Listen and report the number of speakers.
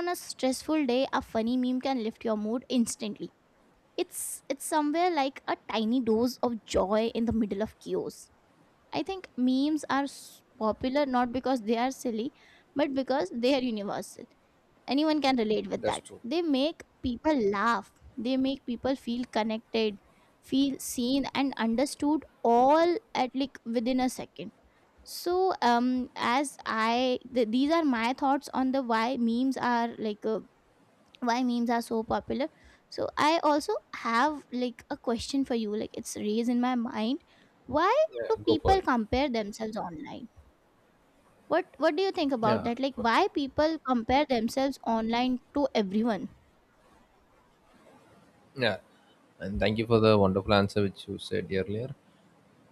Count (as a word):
two